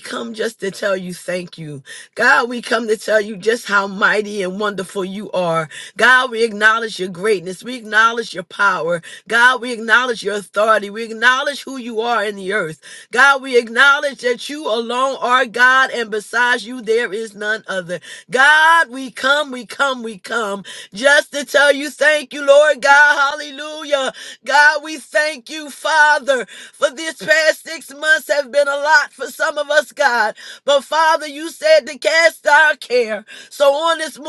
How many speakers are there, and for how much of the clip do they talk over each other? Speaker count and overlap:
one, no overlap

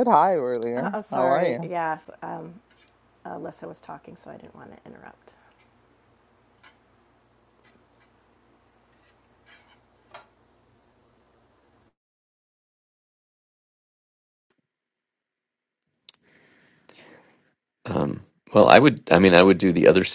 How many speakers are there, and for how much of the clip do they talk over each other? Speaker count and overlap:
three, about 4%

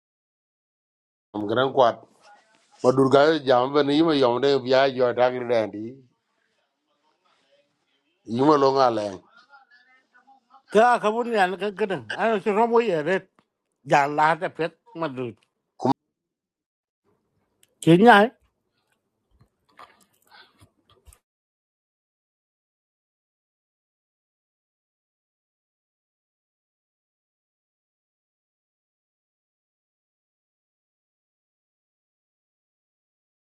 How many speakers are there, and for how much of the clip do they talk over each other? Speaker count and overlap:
two, no overlap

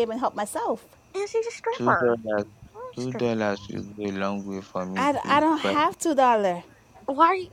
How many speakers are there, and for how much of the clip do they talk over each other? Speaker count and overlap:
three, about 20%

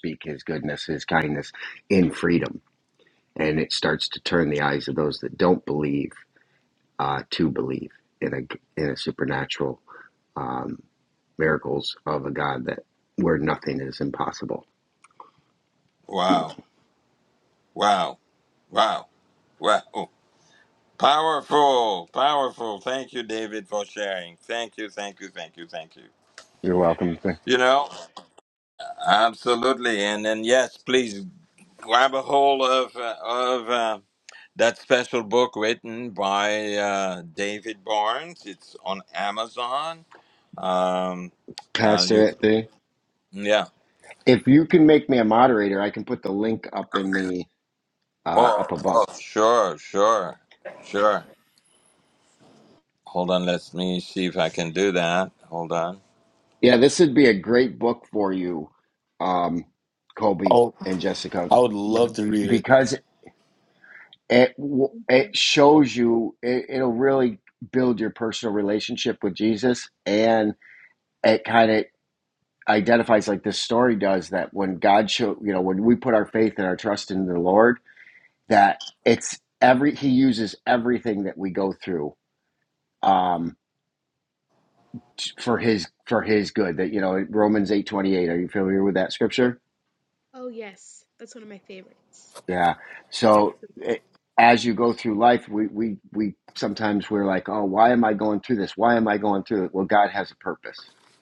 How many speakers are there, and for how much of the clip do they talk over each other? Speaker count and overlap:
four, about 2%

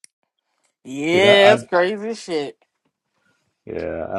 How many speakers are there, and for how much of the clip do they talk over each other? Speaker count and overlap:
two, about 12%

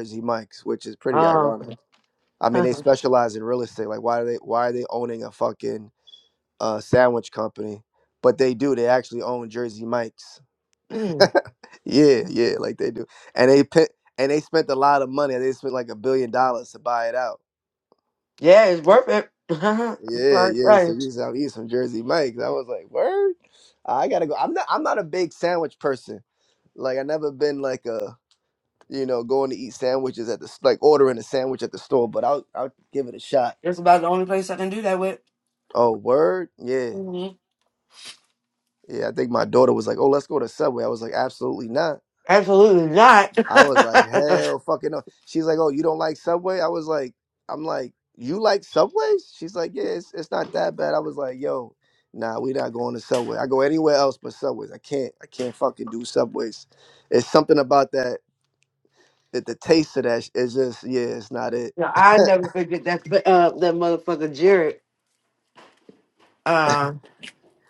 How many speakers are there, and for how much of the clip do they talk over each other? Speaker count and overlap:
two, about 1%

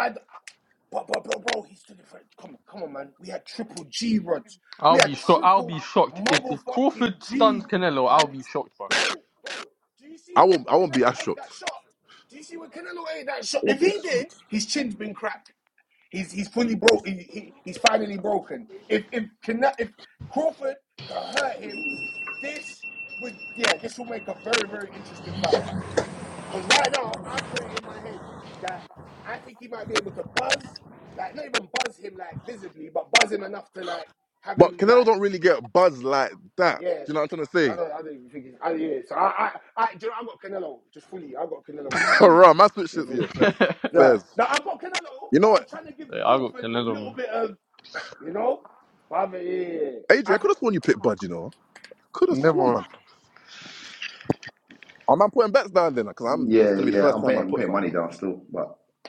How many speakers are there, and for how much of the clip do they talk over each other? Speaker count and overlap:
four, about 16%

